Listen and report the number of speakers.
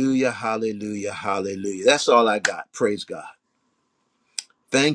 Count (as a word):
one